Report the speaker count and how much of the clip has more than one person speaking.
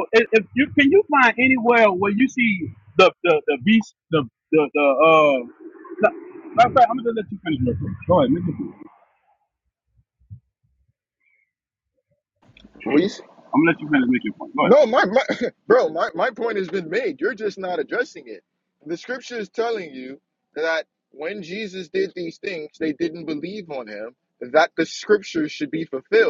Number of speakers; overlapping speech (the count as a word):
two, under 1%